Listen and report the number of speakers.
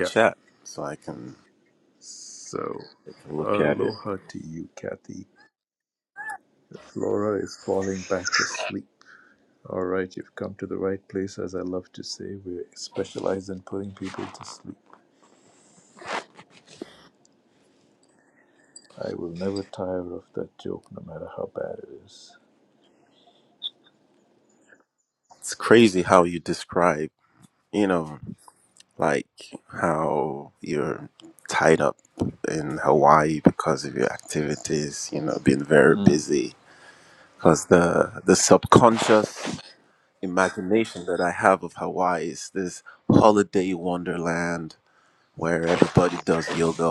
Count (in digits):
2